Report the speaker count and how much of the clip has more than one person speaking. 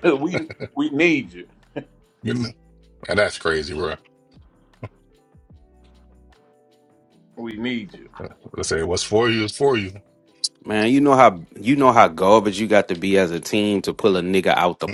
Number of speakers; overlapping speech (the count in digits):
3, no overlap